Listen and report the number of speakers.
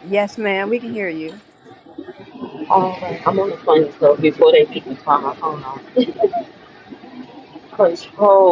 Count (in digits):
2